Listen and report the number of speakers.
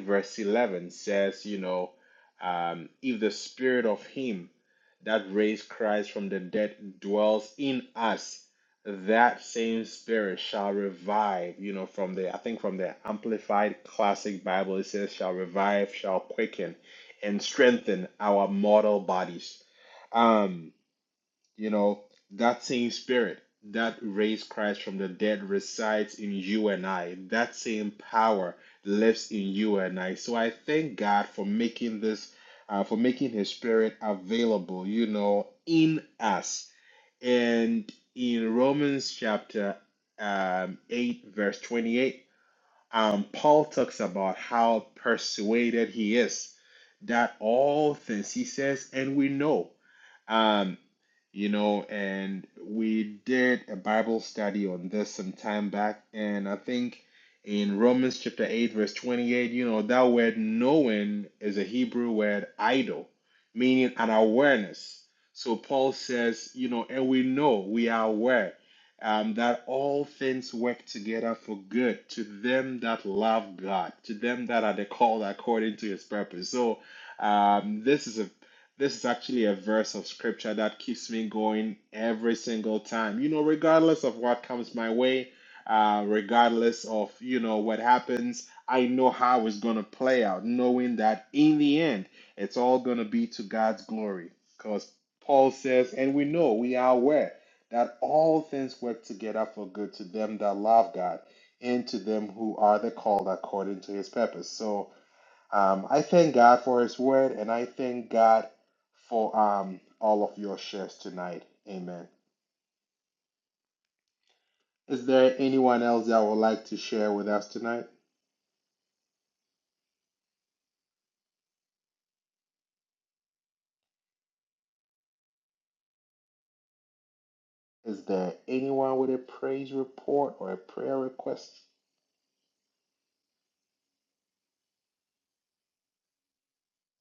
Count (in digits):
1